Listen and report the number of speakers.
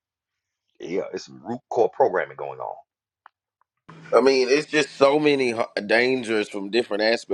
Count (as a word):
two